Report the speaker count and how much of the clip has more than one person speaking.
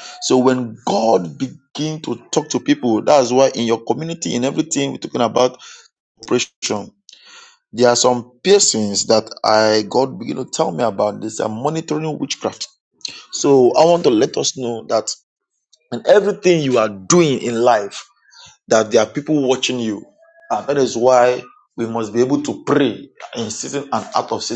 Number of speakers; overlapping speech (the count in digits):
1, no overlap